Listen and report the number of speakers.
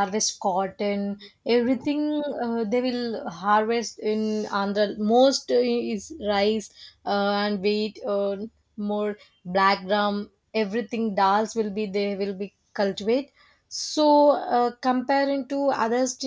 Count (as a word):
one